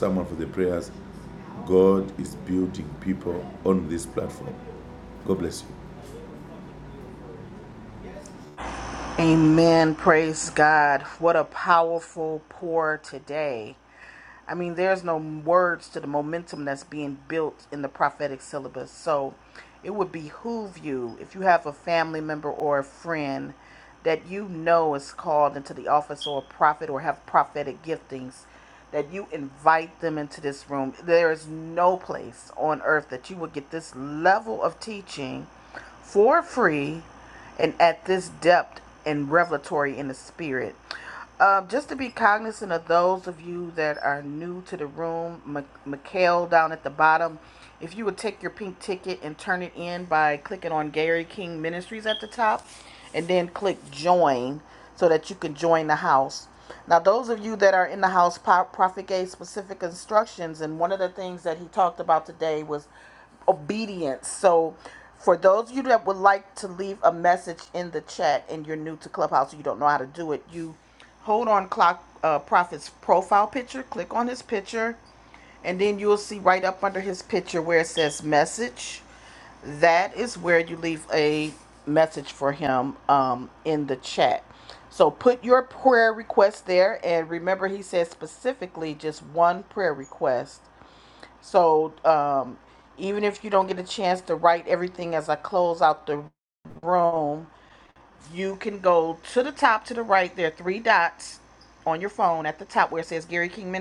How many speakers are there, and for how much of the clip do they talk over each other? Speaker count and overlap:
two, no overlap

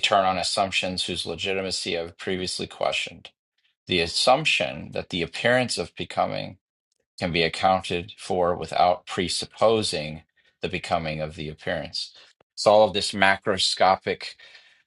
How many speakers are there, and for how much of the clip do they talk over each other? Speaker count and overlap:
one, no overlap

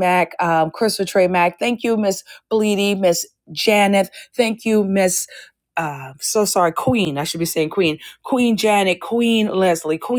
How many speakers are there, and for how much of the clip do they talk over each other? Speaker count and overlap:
one, no overlap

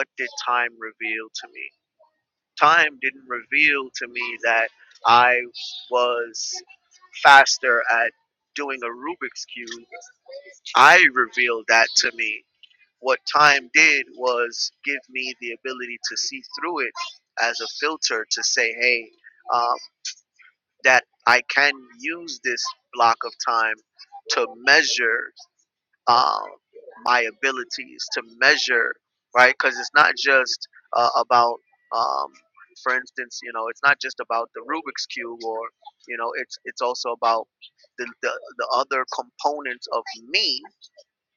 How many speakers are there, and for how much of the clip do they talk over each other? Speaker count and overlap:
one, no overlap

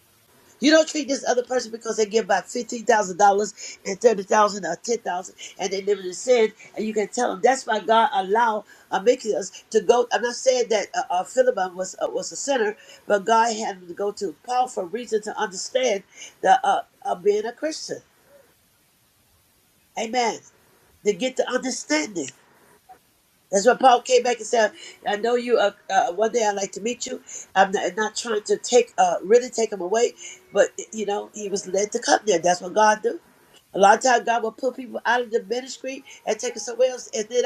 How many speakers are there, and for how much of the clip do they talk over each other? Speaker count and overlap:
one, no overlap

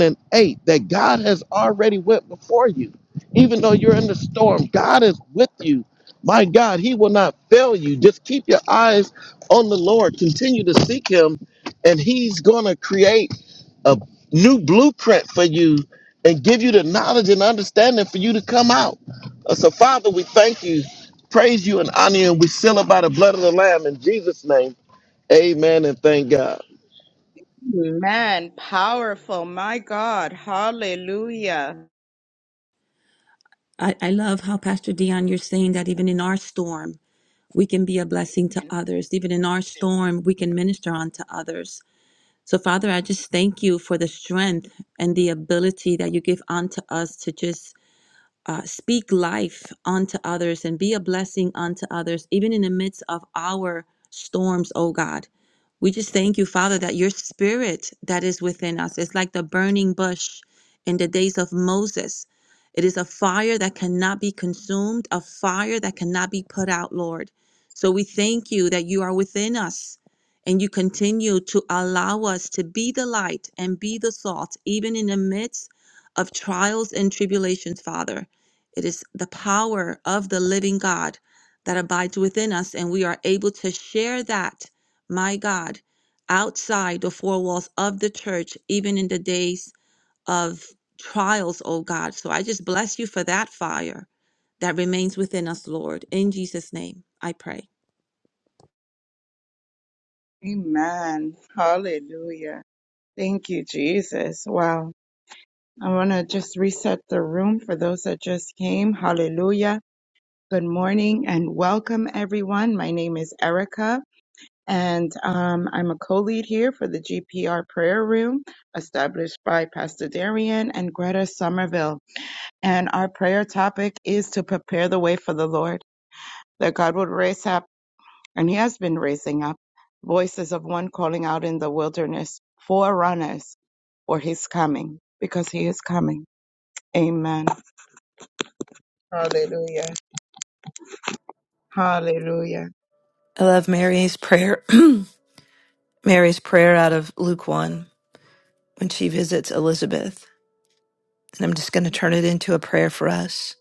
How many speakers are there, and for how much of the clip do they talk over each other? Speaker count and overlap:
four, no overlap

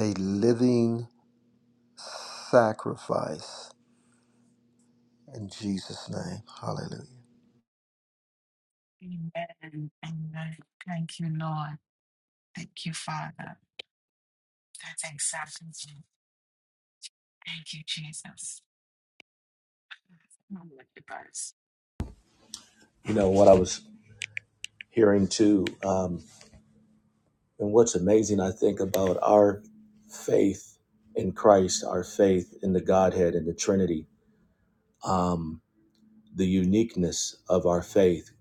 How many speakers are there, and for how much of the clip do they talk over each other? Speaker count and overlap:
three, no overlap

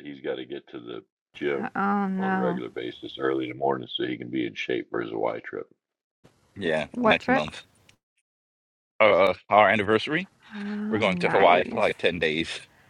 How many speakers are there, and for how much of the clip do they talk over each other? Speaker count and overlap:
three, about 14%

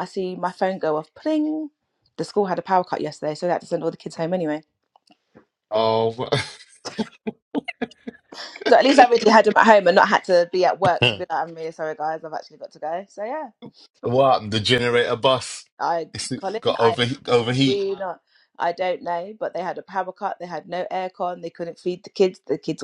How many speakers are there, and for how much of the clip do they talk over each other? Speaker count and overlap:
two, about 3%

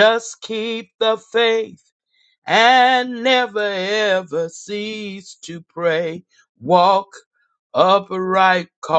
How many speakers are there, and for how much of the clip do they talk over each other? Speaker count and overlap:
one, no overlap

